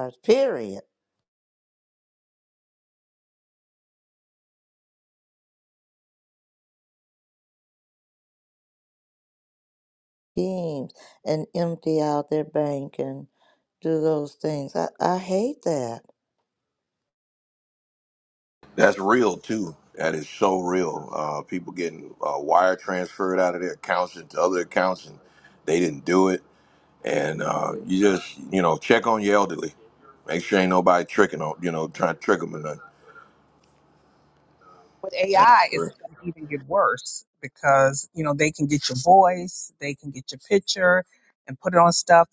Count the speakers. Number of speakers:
three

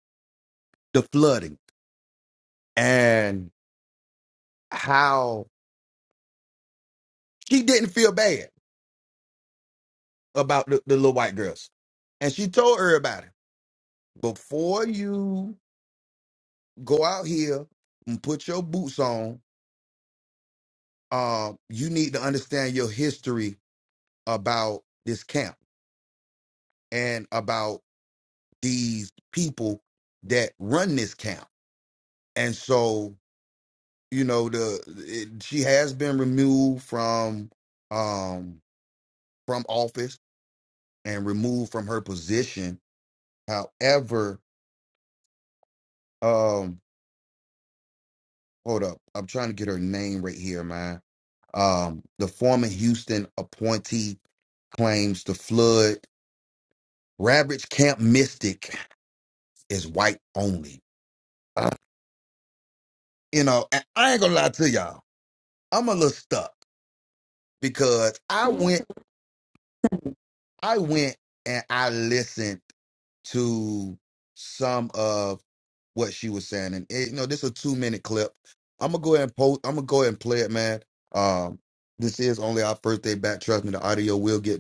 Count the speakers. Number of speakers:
one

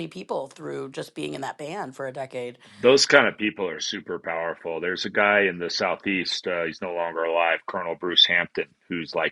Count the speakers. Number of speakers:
two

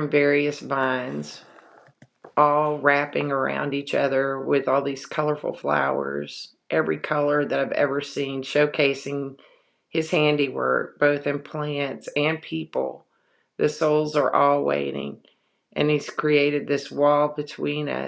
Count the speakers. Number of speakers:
one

